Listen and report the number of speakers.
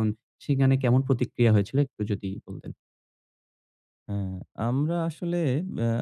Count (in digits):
2